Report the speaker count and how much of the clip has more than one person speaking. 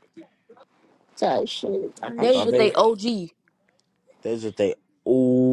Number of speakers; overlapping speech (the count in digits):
3, about 9%